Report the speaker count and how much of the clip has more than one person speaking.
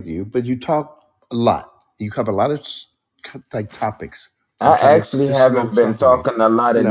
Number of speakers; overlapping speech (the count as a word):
two, about 25%